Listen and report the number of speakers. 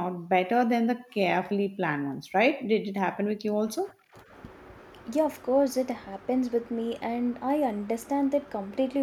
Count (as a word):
two